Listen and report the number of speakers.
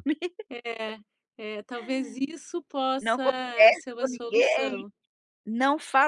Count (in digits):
2